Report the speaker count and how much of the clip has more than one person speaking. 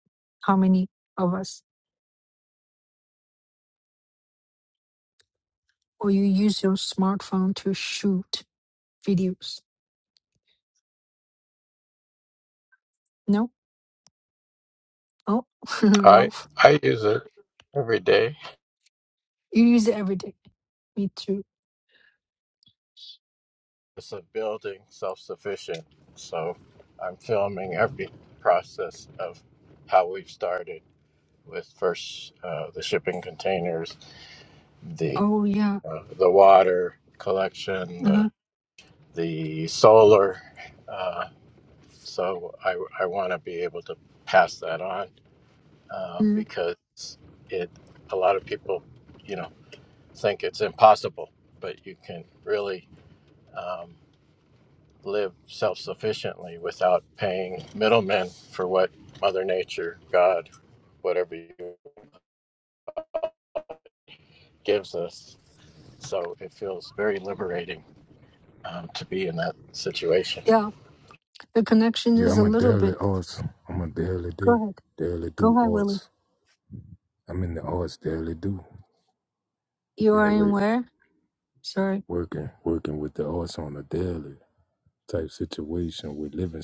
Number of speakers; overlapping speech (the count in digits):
3, about 3%